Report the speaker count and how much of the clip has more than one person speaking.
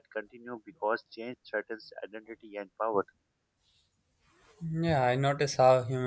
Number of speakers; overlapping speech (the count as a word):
two, no overlap